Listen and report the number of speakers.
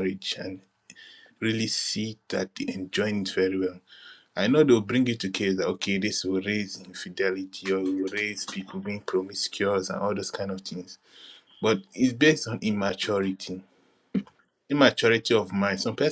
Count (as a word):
one